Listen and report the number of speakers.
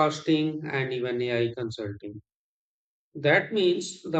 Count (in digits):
1